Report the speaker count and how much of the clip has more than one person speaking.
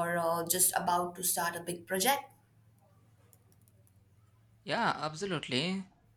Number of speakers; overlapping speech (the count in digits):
2, no overlap